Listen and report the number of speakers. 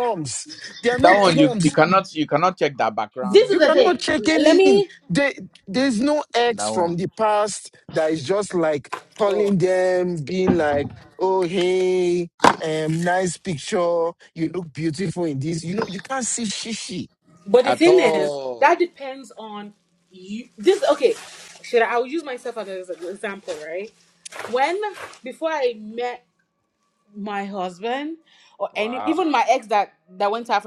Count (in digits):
3